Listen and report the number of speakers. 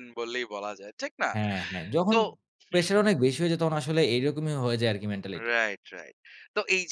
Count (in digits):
2